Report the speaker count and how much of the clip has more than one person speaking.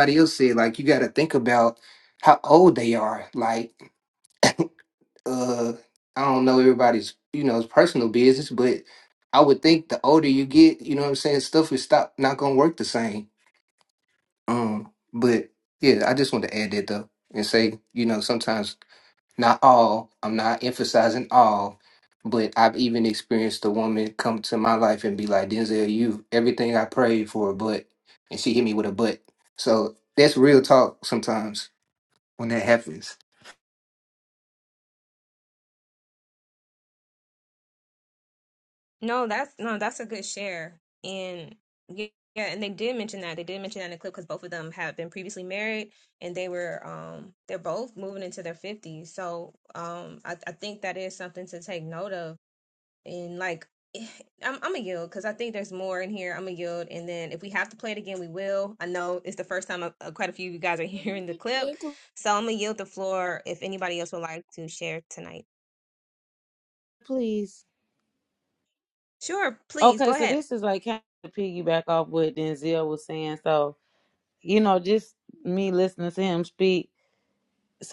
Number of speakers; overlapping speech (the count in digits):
3, about 1%